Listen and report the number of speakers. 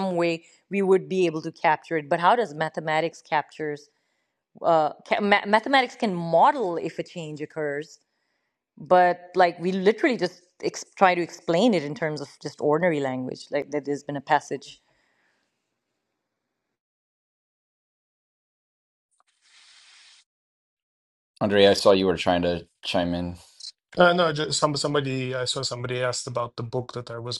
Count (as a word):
three